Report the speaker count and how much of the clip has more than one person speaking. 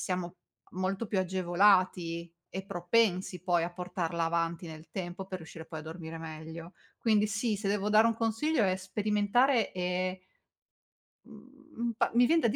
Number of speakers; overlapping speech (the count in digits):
1, no overlap